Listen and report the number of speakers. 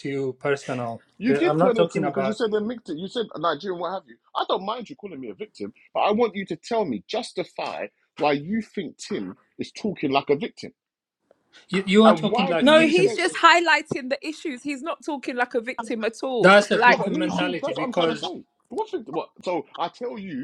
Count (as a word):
three